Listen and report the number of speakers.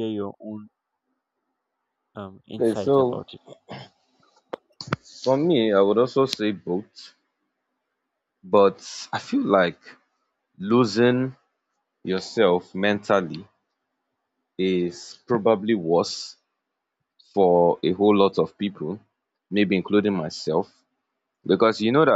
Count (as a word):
two